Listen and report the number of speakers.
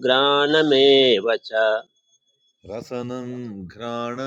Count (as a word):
two